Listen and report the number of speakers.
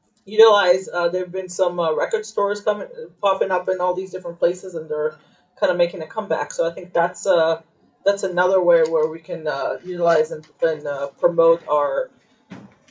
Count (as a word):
one